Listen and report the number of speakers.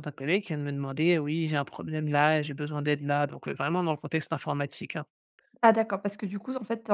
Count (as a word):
two